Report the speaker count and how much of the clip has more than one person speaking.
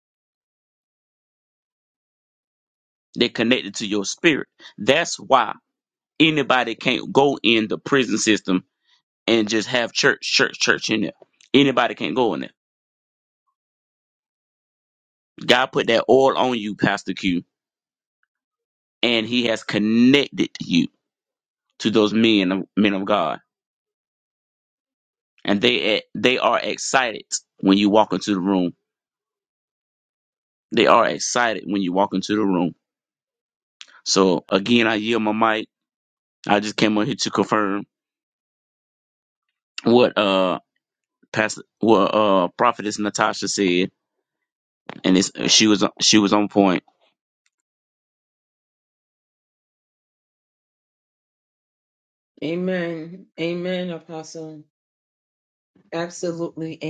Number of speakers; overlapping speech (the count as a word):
two, no overlap